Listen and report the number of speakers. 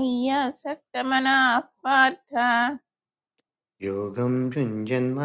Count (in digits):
2